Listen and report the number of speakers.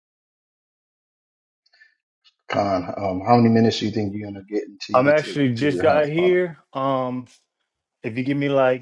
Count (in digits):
2